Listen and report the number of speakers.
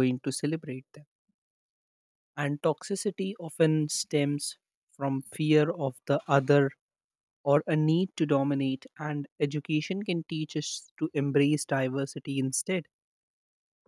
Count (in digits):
1